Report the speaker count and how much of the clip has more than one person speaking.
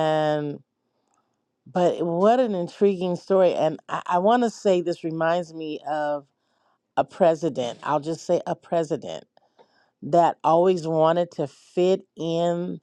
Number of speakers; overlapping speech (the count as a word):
one, no overlap